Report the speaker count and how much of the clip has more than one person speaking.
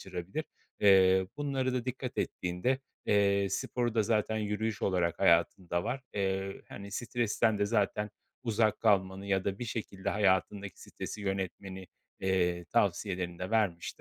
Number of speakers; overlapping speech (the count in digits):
1, no overlap